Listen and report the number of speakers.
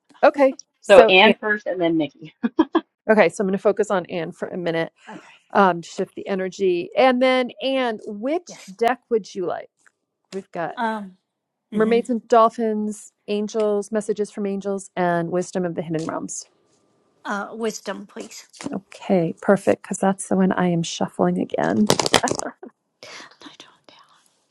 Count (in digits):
3